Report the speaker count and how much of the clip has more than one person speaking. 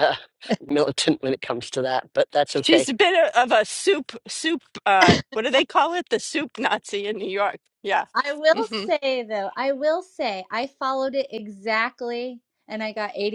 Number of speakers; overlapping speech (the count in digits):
3, about 5%